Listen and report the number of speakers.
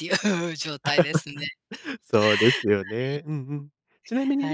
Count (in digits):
2